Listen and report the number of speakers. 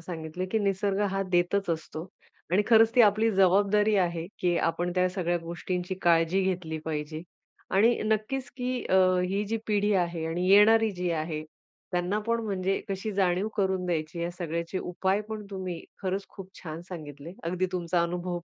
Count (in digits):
1